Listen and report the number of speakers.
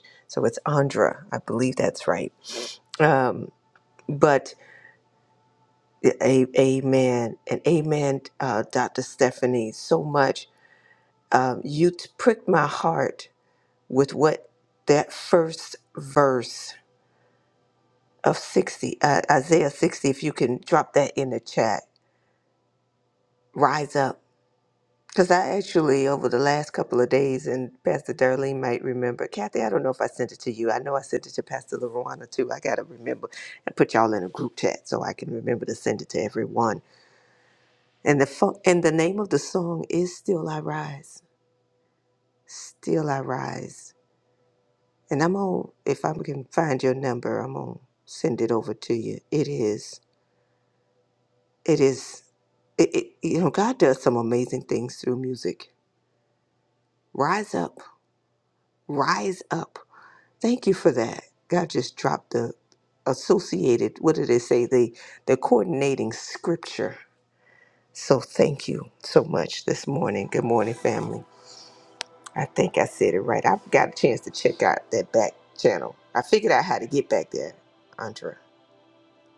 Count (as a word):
one